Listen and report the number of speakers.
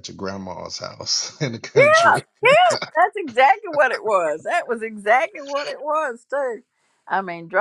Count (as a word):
two